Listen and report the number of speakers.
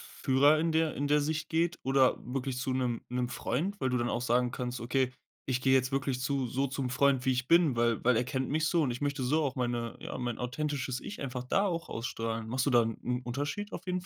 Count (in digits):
1